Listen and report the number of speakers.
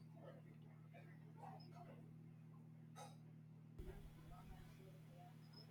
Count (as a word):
zero